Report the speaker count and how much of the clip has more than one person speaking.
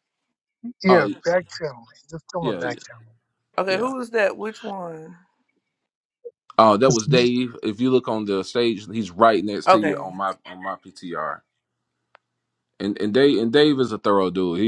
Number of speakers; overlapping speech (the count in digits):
3, about 10%